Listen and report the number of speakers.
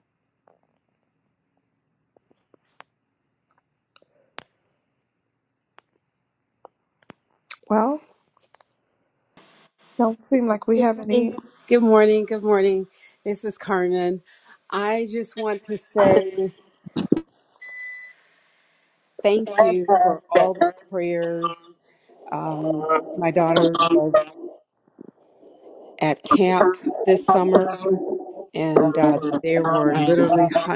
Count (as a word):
two